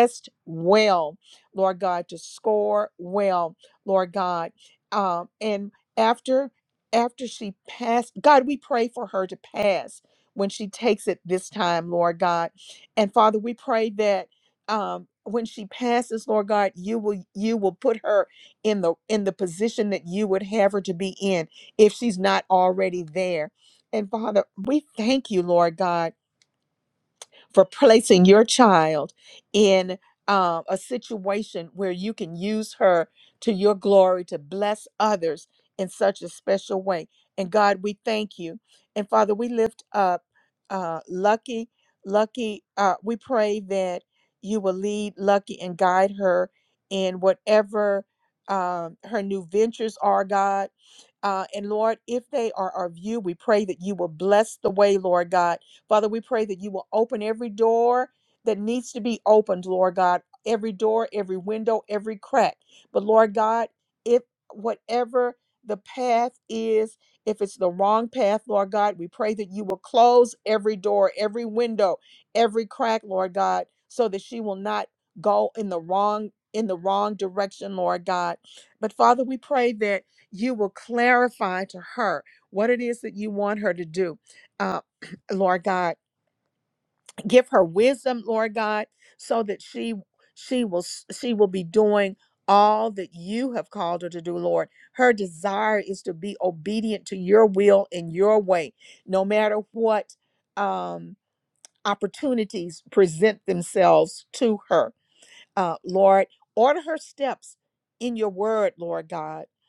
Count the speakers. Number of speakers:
1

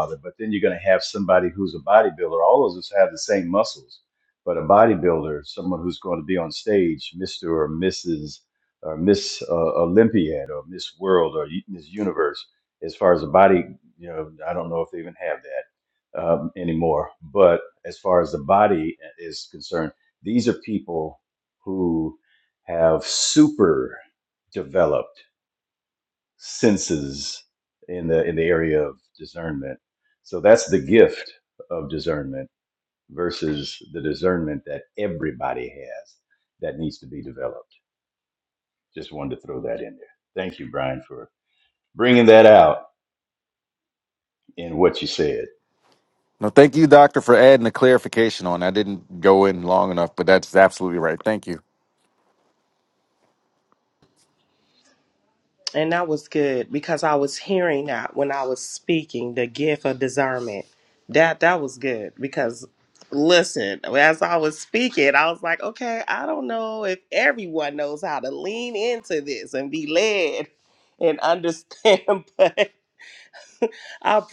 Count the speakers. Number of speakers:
3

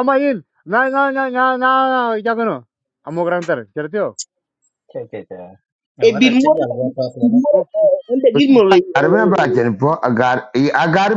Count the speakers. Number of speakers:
4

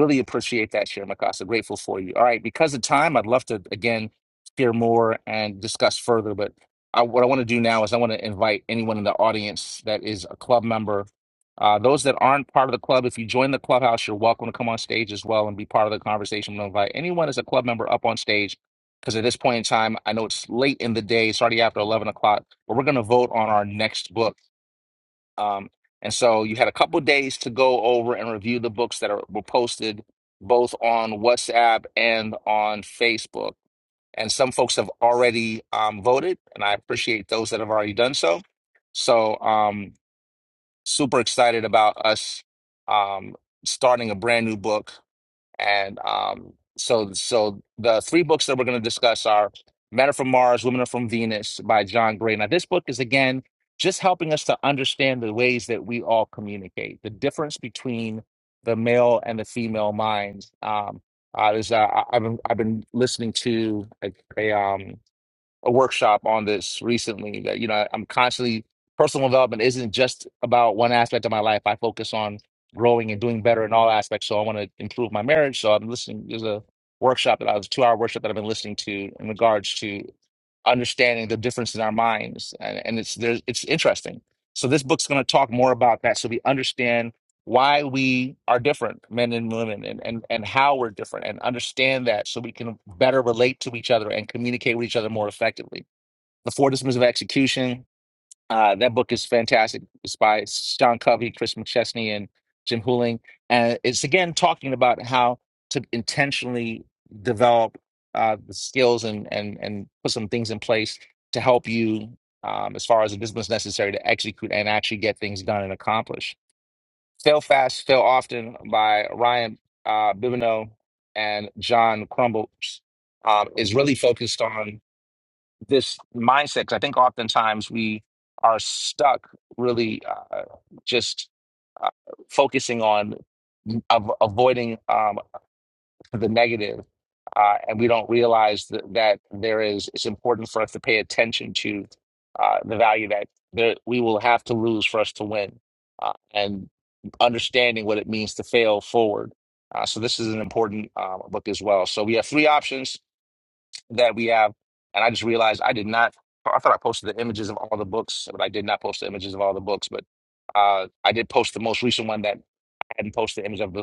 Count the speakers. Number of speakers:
1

